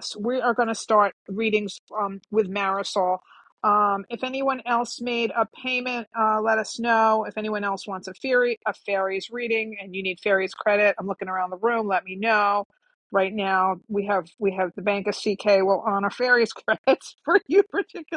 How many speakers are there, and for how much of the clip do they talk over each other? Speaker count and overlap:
1, no overlap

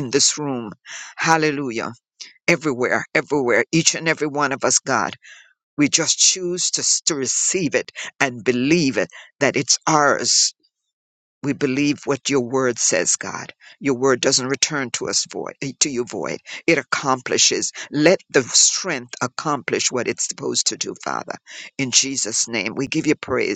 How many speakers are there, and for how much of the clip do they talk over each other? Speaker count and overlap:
1, no overlap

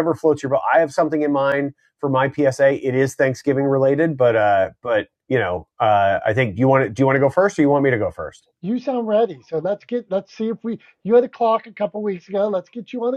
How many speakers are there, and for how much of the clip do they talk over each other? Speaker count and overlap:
2, no overlap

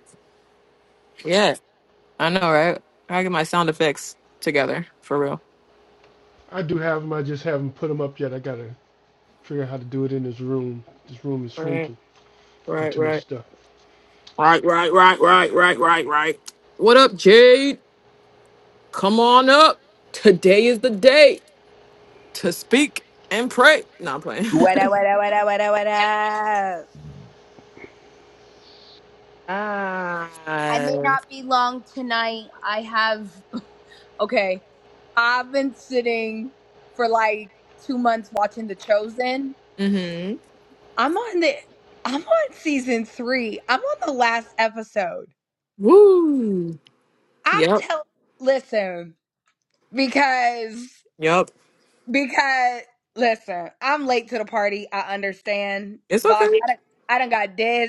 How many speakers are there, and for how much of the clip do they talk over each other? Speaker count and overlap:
3, about 2%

